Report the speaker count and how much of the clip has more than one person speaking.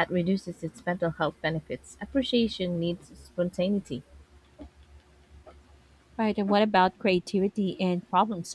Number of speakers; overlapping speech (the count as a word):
two, no overlap